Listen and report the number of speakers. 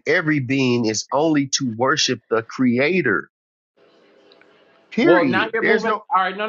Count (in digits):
2